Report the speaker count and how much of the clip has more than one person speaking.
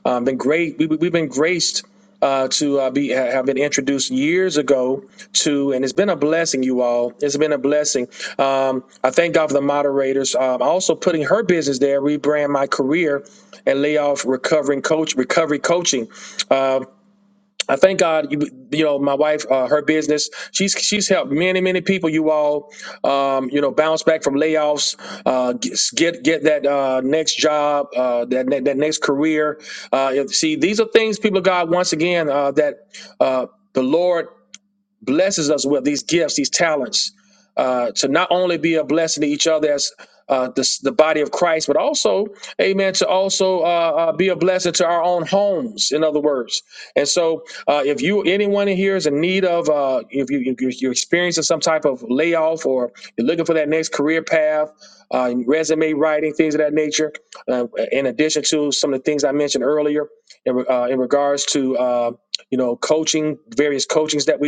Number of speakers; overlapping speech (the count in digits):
1, no overlap